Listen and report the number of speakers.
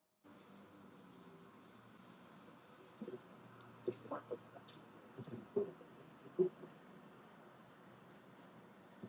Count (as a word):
zero